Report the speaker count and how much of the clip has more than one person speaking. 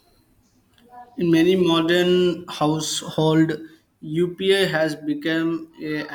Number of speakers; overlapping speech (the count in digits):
1, no overlap